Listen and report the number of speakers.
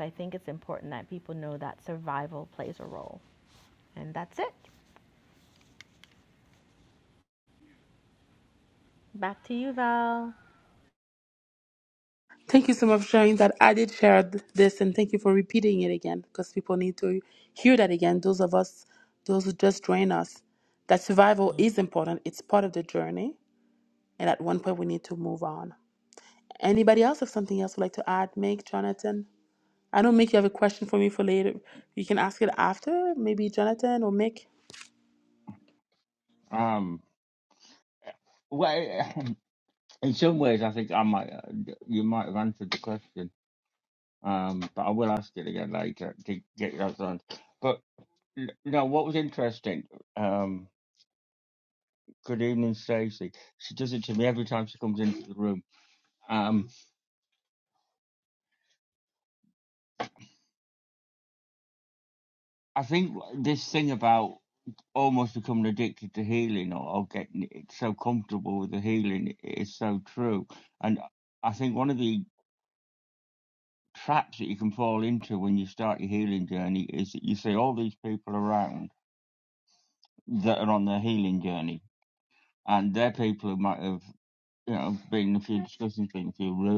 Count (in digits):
3